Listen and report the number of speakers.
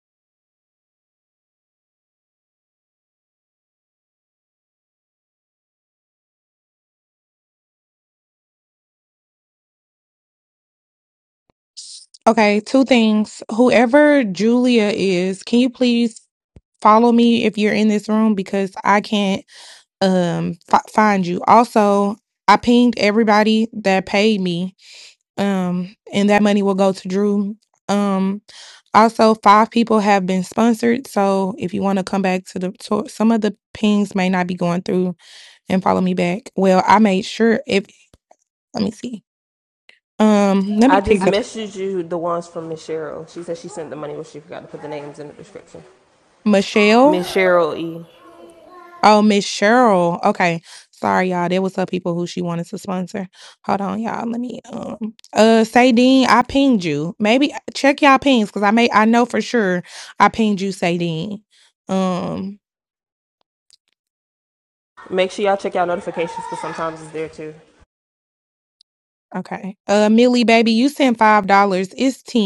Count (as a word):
two